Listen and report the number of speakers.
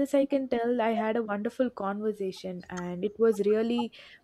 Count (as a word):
one